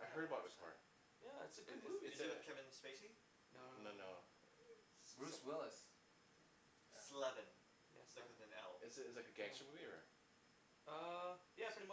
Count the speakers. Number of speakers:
4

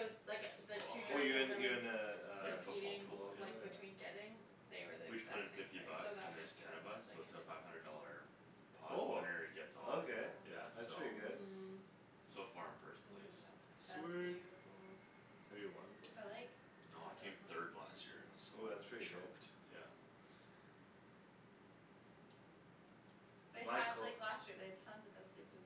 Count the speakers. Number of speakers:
4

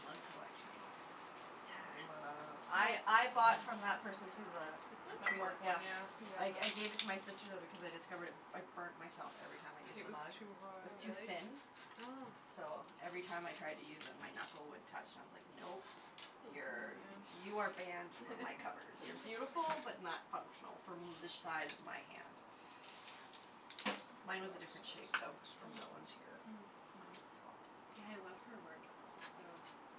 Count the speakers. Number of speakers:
3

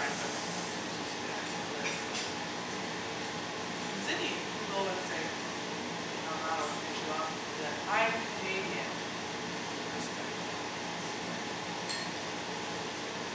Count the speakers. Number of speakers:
1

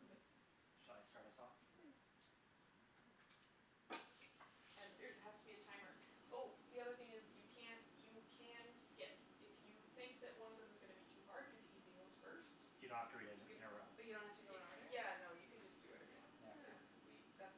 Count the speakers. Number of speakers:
3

